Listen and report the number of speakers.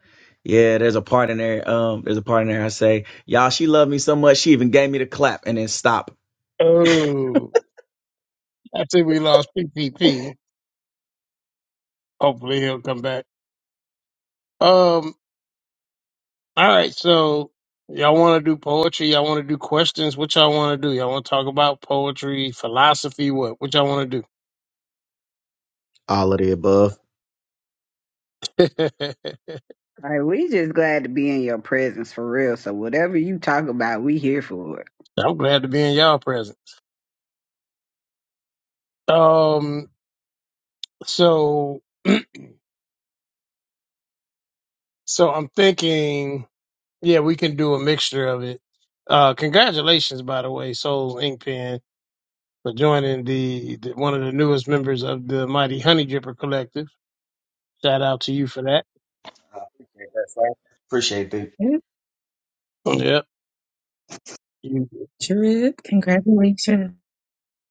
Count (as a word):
four